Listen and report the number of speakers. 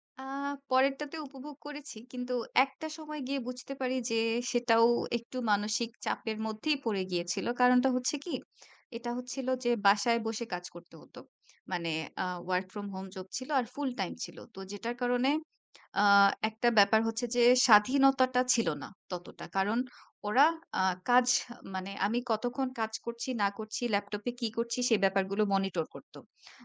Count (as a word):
one